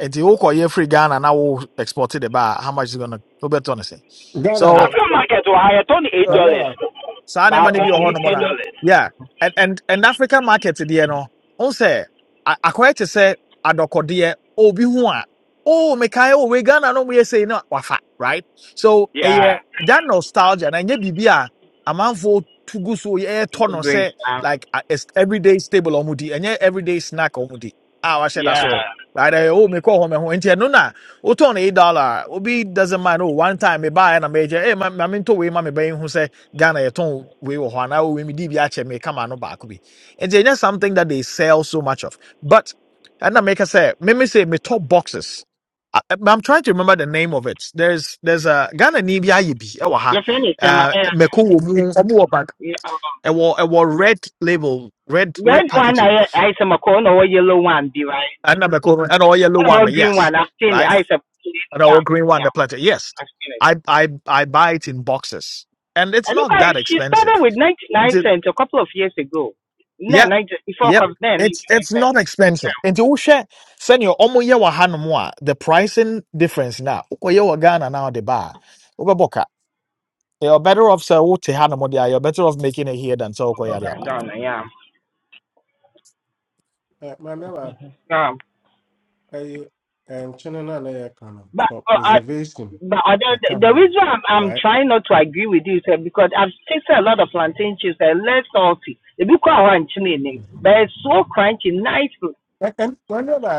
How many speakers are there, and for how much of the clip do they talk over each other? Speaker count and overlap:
4, about 8%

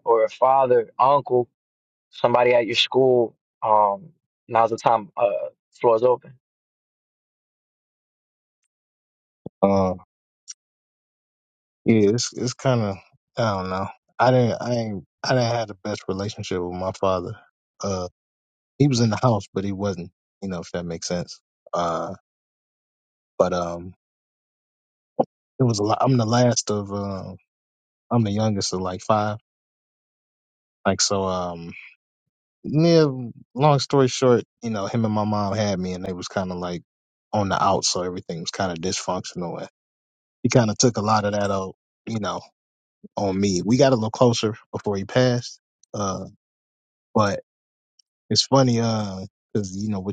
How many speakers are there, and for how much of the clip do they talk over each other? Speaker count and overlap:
2, no overlap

